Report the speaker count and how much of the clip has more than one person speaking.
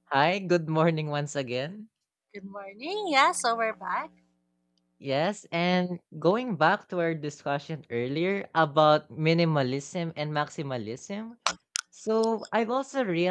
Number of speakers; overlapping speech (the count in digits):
2, no overlap